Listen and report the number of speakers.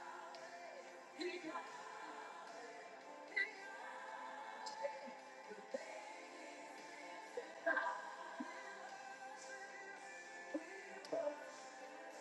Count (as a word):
zero